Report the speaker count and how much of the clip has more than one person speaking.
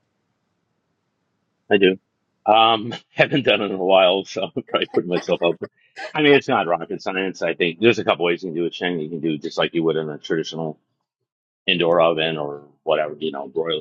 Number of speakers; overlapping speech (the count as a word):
one, no overlap